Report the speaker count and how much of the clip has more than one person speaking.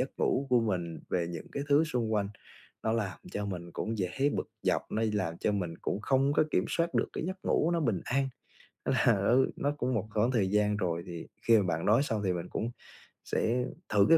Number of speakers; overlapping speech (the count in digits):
1, no overlap